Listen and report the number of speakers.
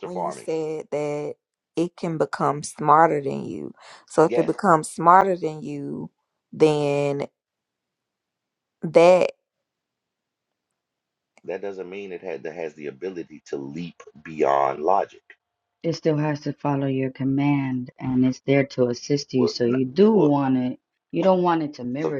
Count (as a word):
three